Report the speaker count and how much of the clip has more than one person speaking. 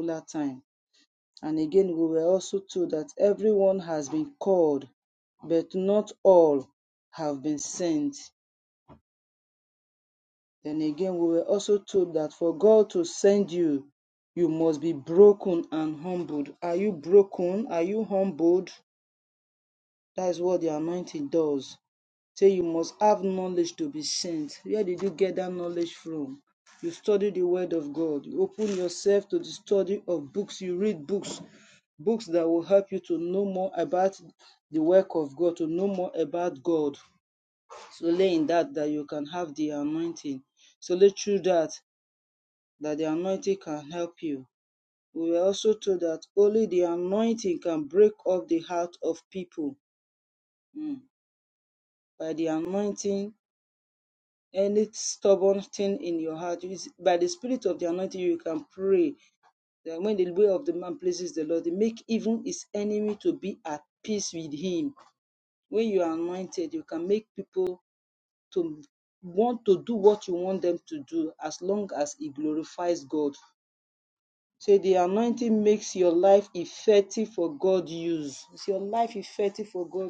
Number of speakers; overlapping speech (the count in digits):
1, no overlap